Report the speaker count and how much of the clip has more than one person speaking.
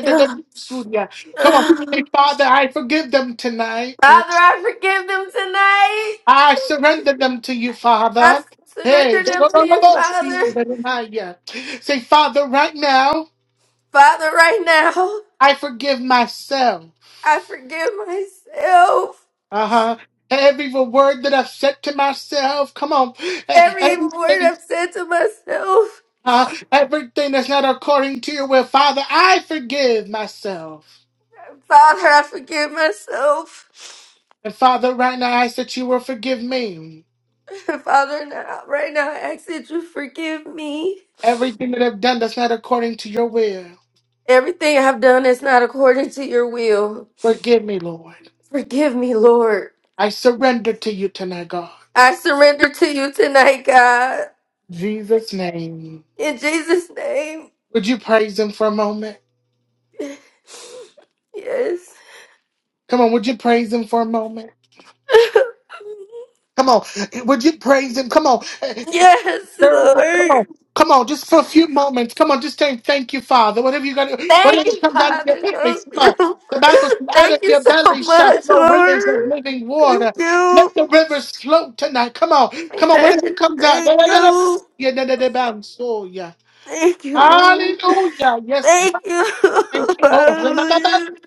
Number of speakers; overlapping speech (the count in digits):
2, about 13%